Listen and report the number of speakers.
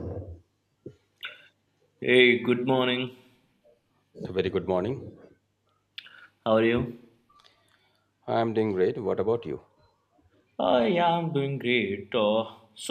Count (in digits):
2